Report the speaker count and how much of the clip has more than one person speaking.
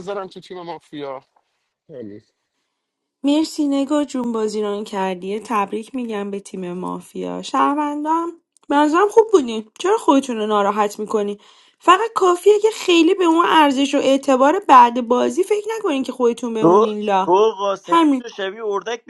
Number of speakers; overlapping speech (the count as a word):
three, about 4%